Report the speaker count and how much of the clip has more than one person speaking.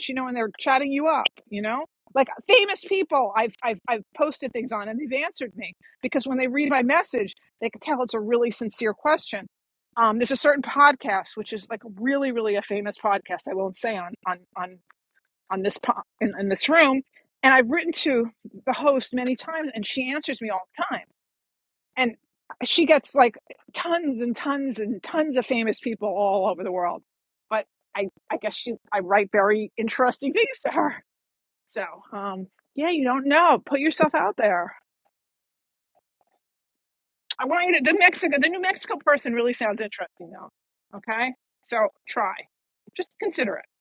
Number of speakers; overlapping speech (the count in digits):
1, no overlap